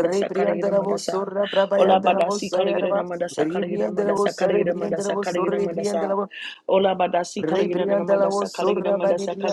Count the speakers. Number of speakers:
two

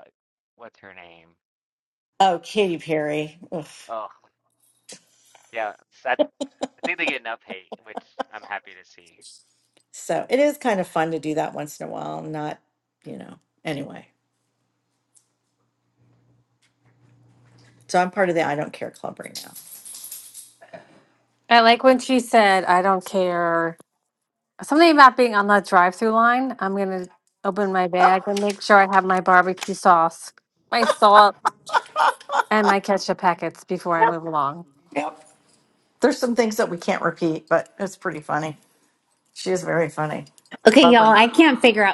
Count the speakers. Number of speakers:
four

